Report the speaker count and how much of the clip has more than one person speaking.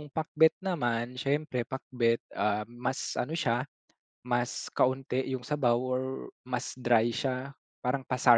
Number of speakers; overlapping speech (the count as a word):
one, no overlap